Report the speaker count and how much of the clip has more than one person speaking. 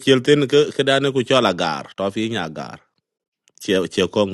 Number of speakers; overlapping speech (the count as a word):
one, no overlap